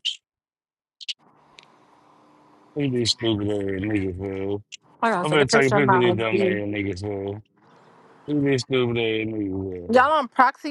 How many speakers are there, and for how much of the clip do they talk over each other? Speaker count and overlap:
2, about 13%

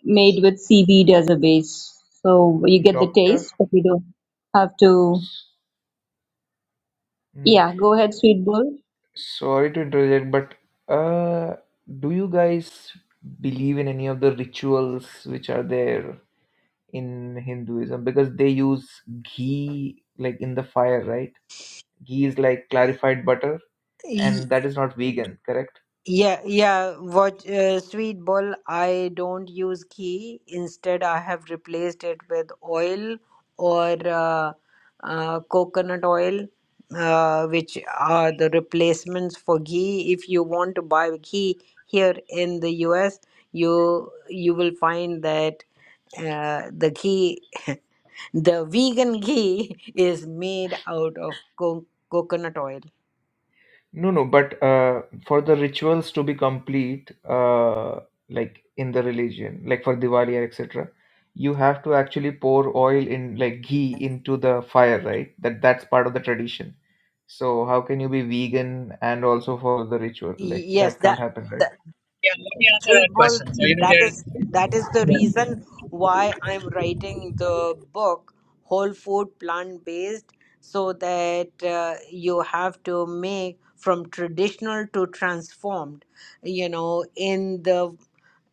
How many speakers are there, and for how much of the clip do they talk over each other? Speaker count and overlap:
4, about 4%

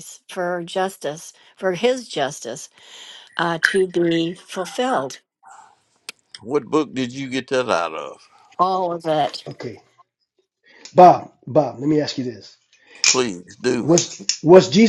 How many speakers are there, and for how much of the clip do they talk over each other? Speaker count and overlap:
3, about 1%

